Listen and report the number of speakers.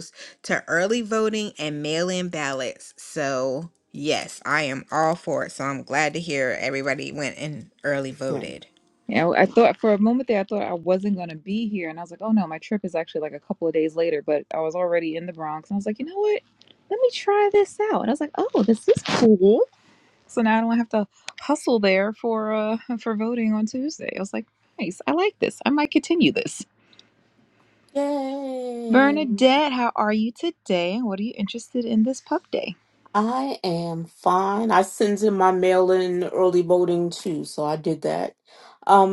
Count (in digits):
3